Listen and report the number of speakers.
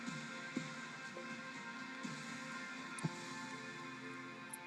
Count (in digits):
0